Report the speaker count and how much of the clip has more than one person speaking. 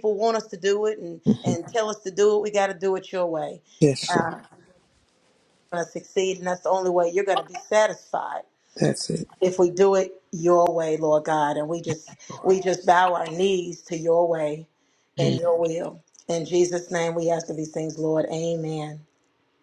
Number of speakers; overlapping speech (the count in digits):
2, about 5%